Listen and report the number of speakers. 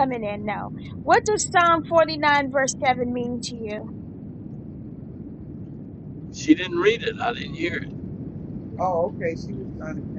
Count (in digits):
3